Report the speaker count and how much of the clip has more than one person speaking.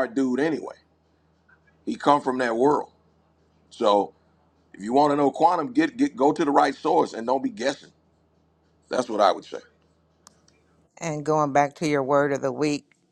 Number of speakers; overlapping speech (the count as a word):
two, no overlap